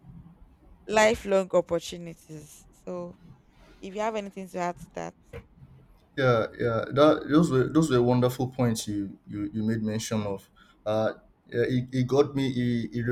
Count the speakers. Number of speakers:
2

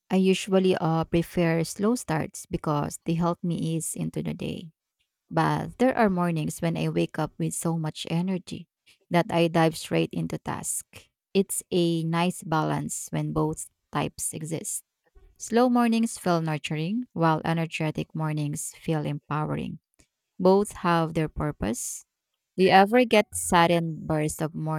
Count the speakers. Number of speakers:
1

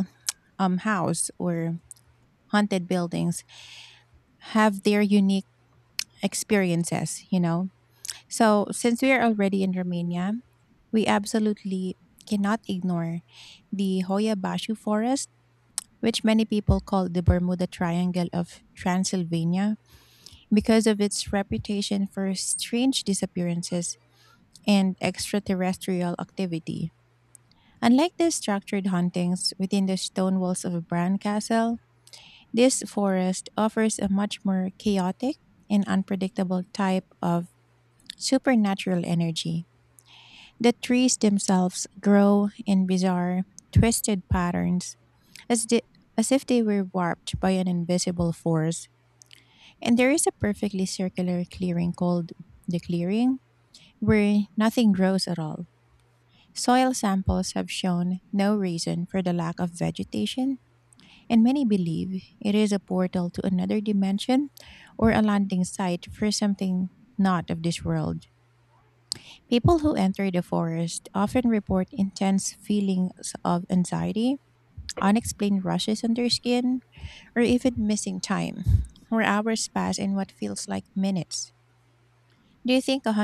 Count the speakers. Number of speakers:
1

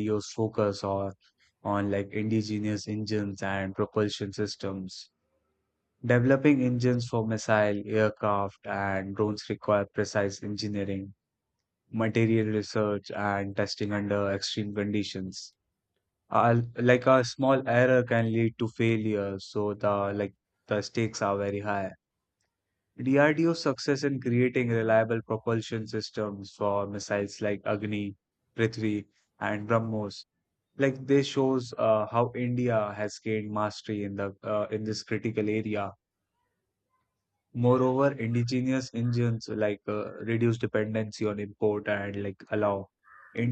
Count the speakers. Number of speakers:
1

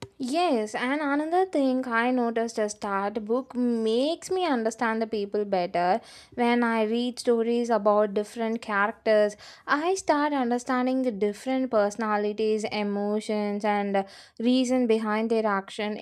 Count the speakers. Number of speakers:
1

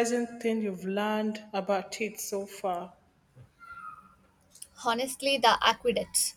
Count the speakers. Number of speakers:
2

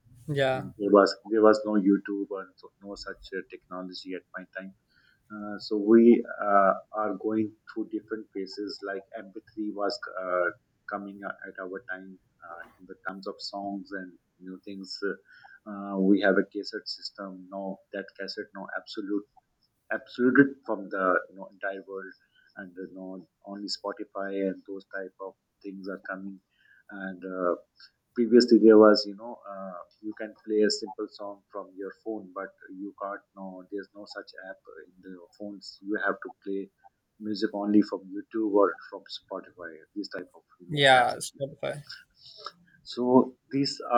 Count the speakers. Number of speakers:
2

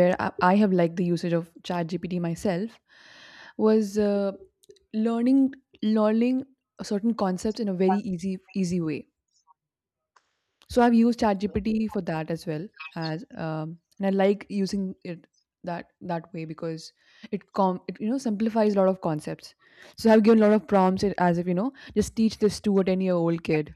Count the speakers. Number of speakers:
1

